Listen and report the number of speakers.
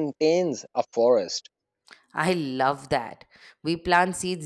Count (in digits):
2